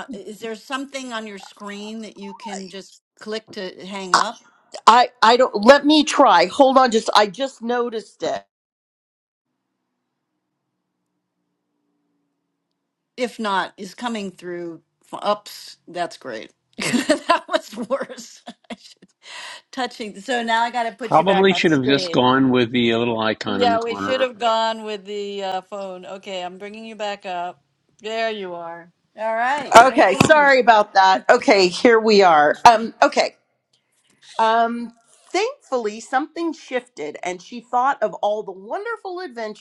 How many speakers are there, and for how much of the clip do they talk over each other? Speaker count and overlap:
three, about 8%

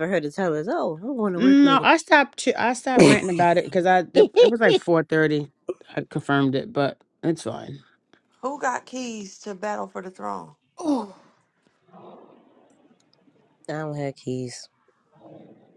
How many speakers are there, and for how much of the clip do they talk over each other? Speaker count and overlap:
three, about 3%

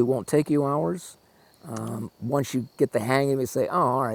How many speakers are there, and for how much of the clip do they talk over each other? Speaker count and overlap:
one, no overlap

